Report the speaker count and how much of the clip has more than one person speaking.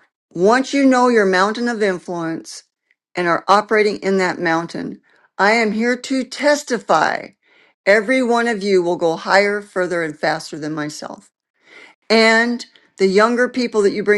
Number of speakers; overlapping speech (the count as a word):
one, no overlap